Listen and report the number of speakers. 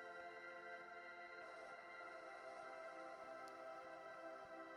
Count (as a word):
zero